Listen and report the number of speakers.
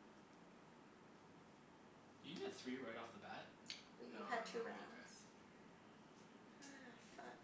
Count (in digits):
2